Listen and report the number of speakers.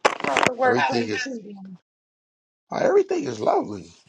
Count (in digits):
1